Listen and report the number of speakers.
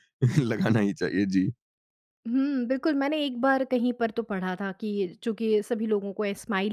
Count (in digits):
2